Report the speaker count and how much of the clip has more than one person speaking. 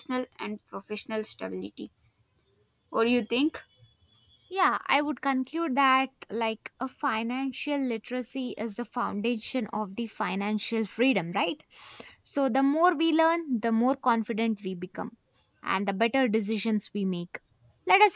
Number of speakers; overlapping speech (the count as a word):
two, no overlap